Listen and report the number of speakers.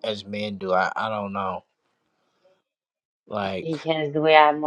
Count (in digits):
2